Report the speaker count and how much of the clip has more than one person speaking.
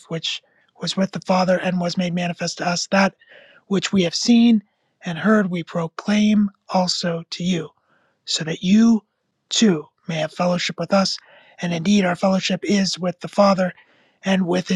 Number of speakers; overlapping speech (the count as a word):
one, no overlap